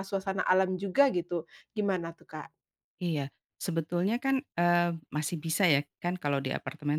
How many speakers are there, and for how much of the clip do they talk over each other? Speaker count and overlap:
two, no overlap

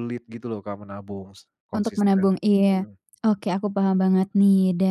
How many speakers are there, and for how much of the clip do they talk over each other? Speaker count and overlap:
two, about 15%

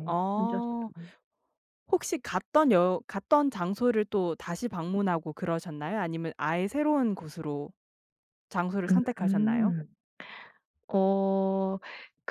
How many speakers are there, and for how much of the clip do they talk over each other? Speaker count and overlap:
two, about 11%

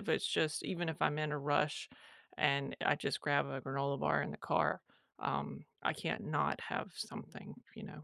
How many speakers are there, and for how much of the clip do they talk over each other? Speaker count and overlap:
one, no overlap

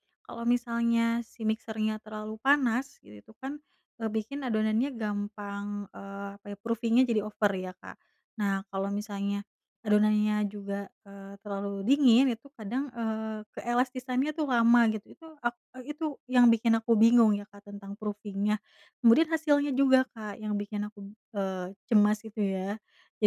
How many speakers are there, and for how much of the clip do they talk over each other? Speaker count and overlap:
one, no overlap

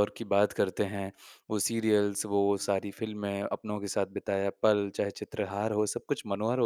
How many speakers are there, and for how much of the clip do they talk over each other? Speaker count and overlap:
one, no overlap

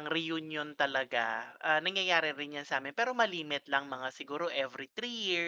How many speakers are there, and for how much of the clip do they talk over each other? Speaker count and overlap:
one, no overlap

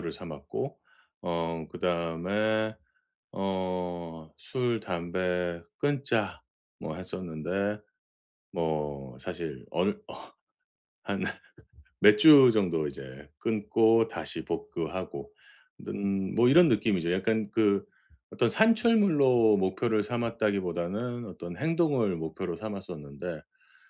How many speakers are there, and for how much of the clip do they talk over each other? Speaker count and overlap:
one, no overlap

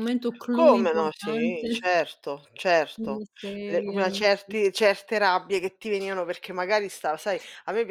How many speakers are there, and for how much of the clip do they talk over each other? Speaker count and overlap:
two, about 30%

